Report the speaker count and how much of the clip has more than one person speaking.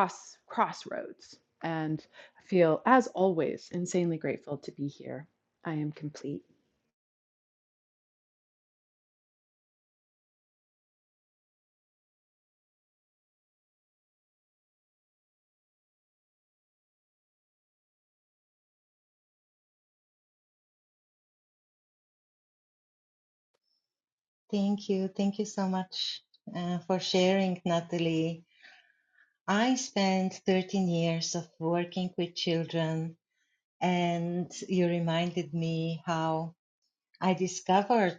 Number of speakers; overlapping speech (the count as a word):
two, no overlap